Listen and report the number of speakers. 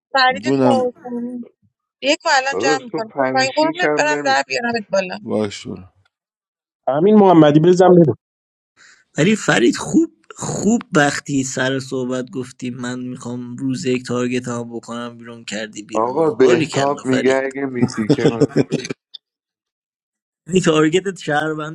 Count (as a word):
five